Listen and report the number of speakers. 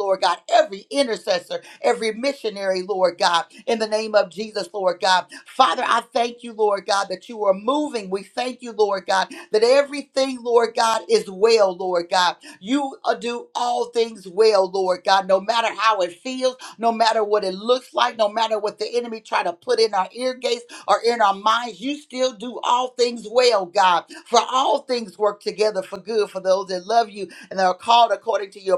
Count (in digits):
1